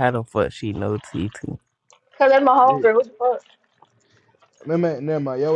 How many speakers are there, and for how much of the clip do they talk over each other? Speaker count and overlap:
three, about 4%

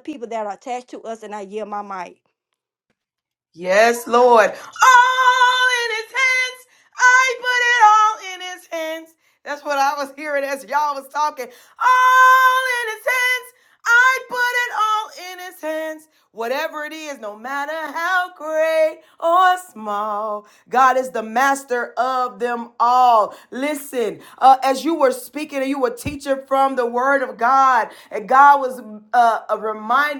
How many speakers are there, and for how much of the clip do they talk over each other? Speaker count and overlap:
two, no overlap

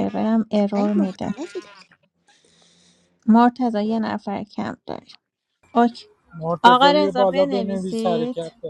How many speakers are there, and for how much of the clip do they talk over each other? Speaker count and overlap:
three, about 27%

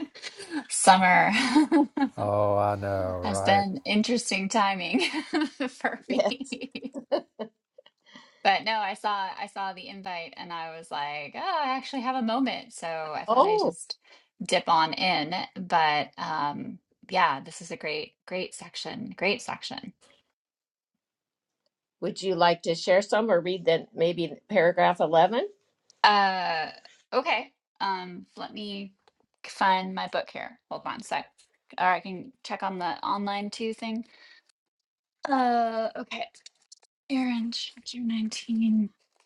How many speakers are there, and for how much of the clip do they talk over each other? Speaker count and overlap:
three, about 3%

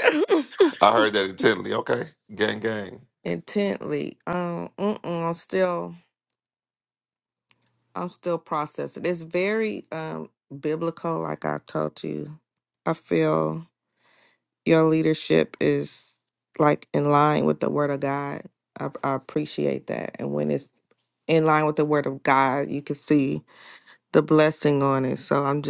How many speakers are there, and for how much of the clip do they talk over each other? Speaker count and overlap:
two, no overlap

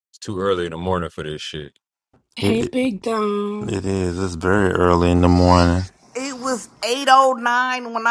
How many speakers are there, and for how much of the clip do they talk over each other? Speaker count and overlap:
four, about 2%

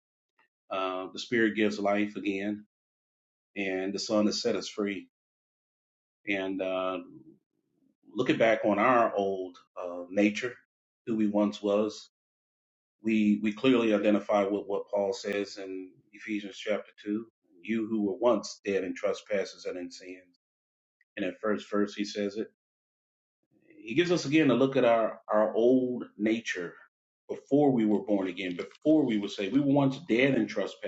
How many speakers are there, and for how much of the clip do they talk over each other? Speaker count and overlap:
one, no overlap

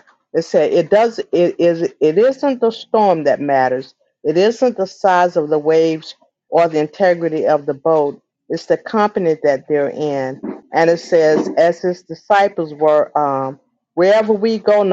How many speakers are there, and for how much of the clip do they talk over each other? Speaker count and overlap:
one, no overlap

